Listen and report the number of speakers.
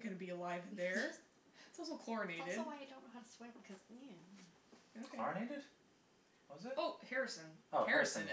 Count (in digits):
3